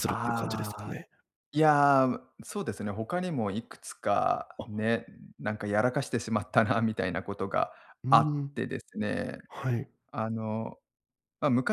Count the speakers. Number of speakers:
2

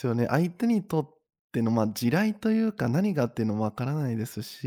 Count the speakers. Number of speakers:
1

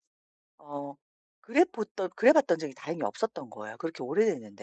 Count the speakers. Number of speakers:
1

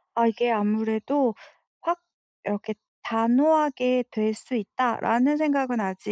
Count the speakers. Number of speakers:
1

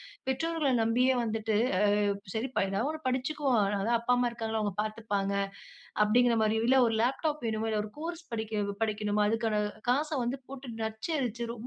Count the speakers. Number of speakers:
1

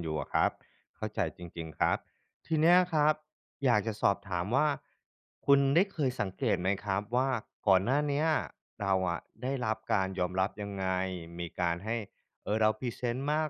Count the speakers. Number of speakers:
1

